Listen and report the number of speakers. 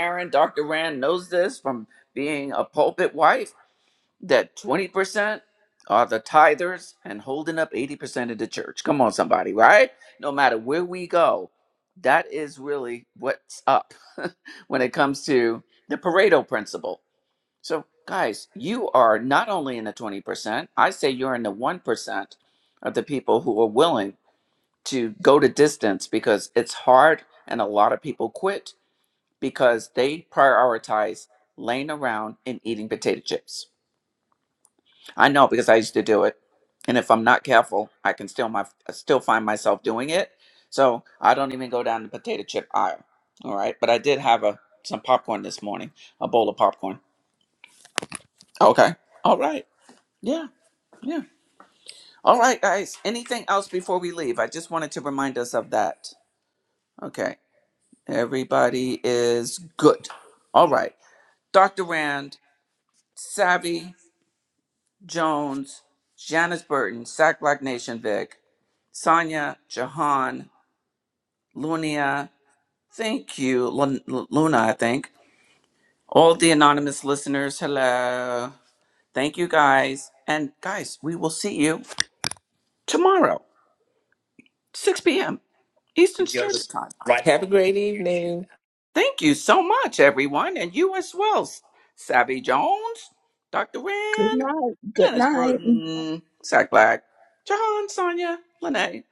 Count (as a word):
three